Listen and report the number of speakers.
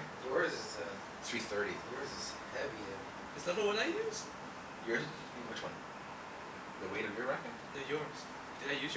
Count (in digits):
3